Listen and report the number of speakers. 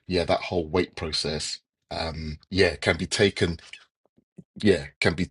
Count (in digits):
1